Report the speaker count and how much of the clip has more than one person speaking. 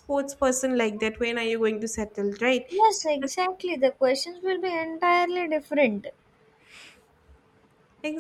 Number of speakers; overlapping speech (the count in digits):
2, under 1%